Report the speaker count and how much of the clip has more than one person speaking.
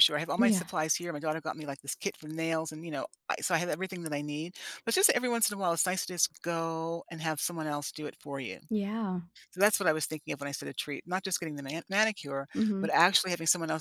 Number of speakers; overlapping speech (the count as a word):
two, about 2%